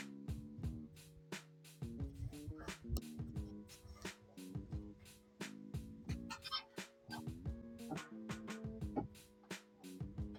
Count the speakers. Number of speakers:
zero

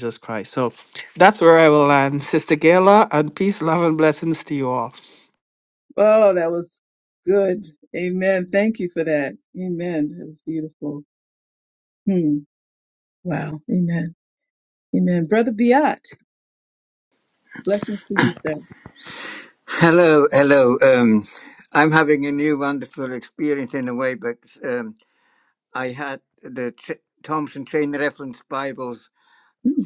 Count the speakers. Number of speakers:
three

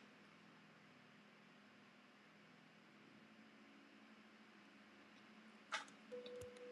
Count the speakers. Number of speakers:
zero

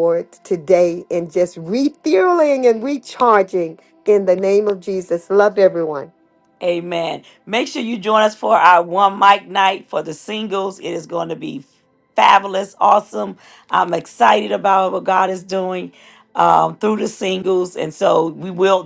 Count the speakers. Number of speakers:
two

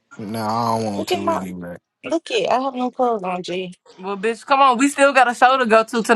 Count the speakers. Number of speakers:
three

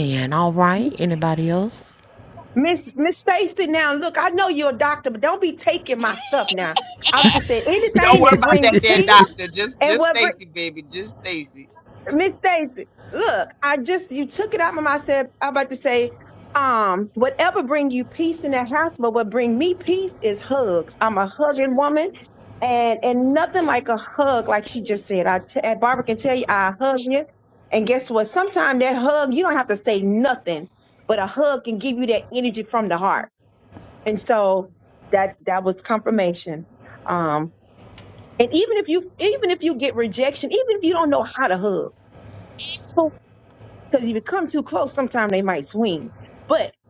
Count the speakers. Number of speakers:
three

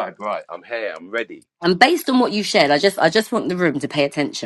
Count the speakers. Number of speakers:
two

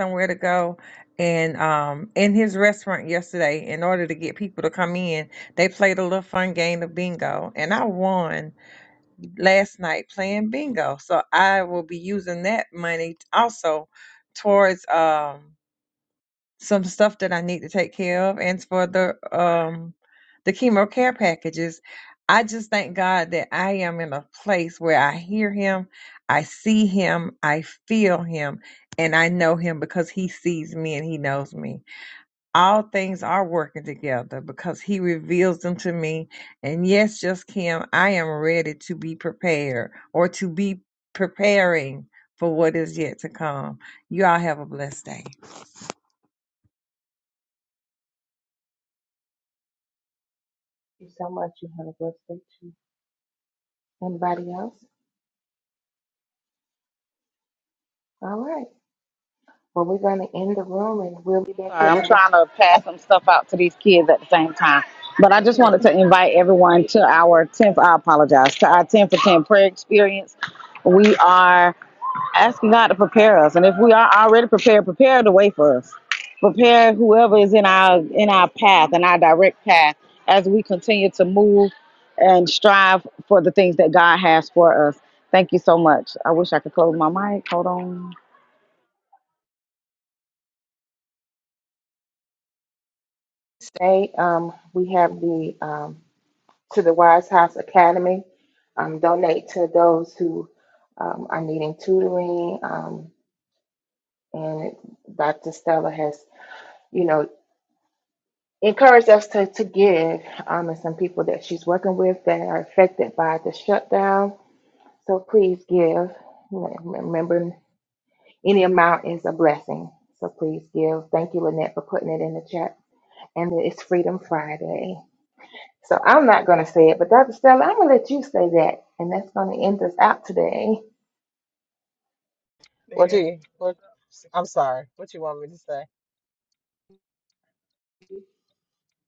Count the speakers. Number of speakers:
four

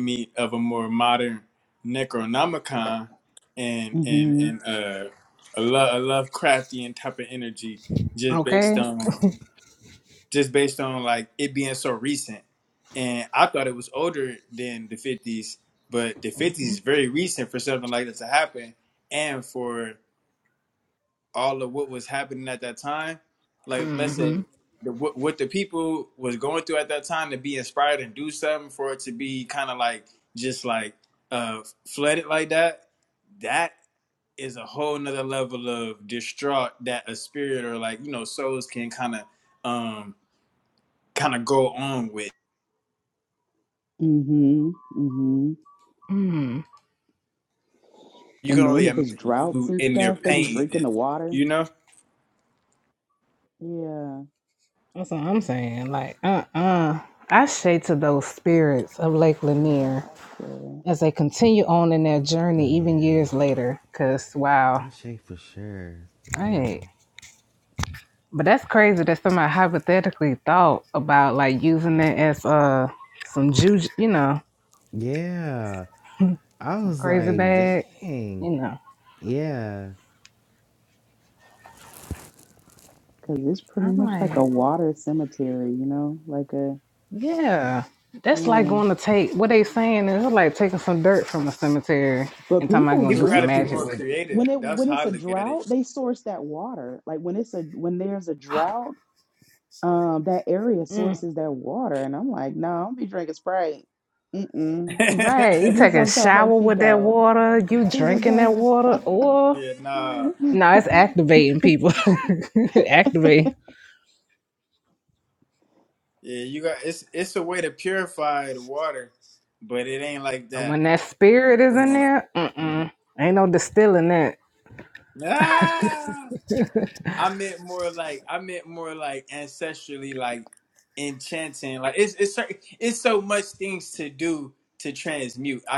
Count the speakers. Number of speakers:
four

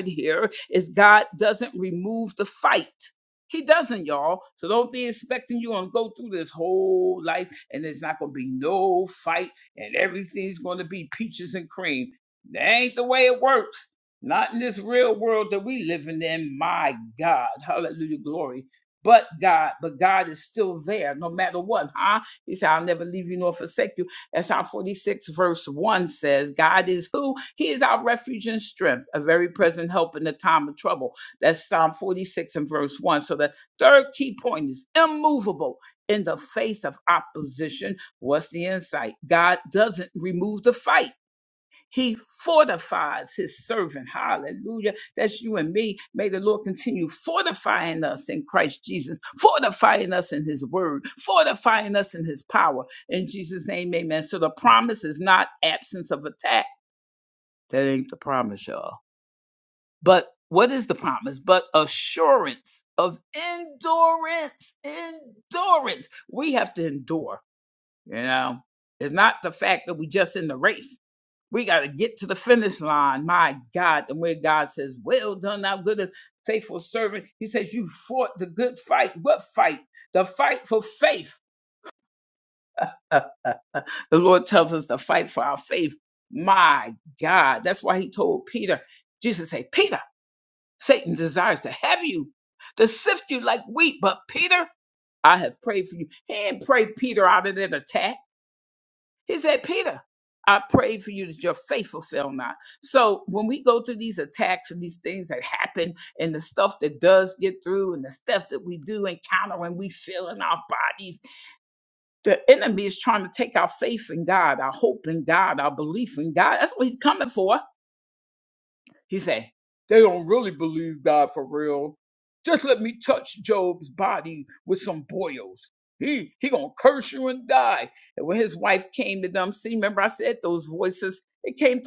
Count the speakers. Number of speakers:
one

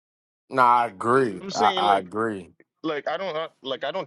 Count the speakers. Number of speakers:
two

